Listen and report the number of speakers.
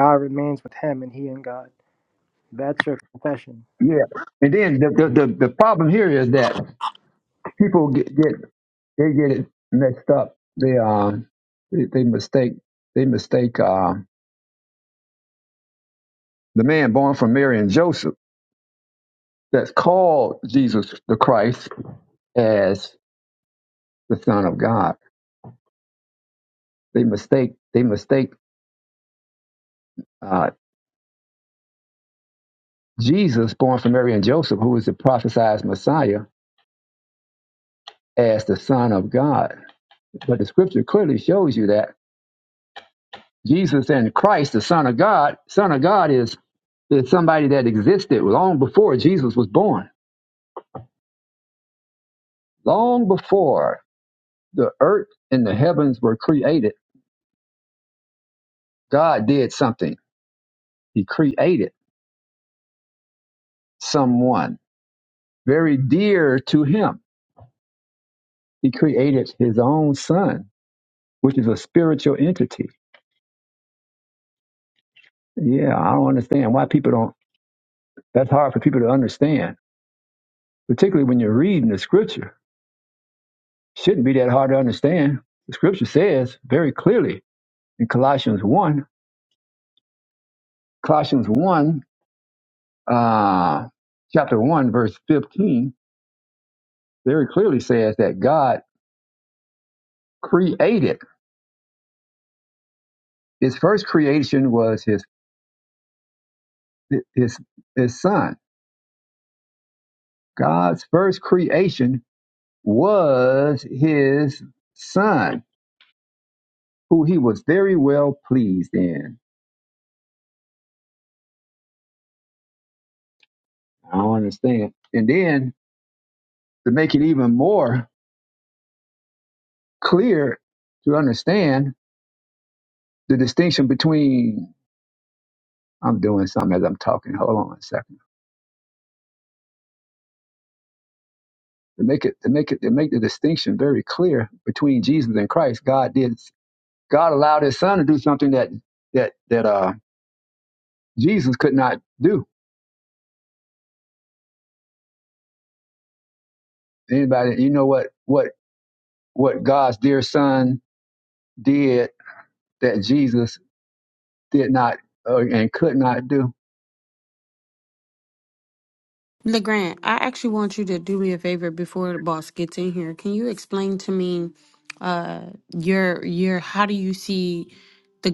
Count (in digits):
3